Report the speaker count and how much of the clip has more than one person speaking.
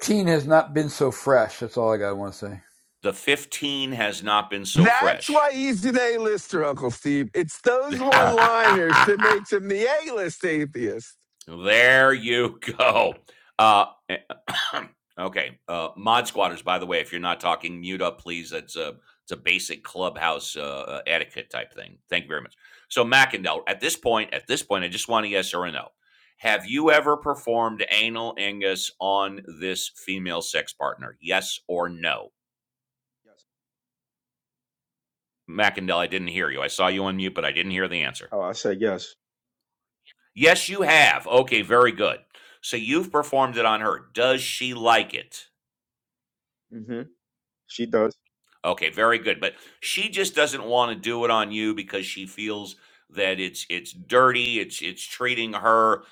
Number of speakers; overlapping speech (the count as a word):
four, about 1%